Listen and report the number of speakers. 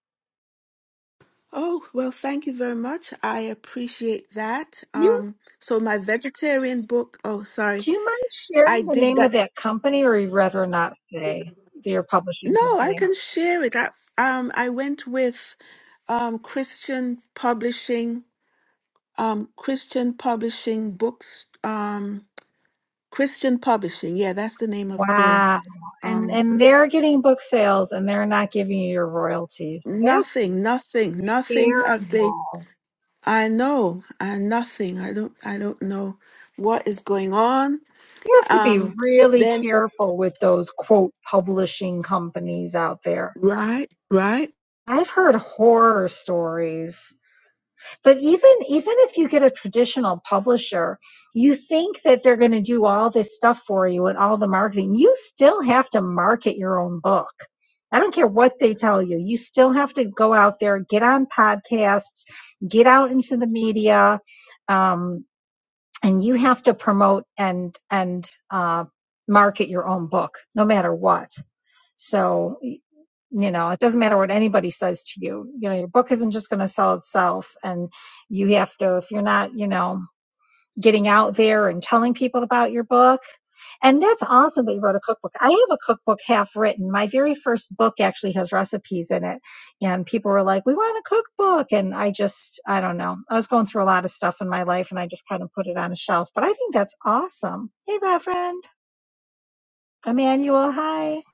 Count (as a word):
two